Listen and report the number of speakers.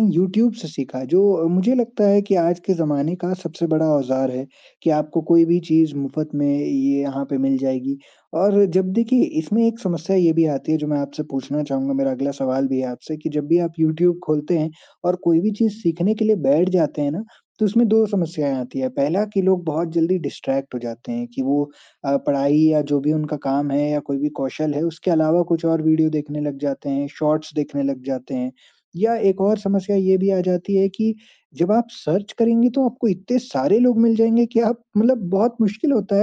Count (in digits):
1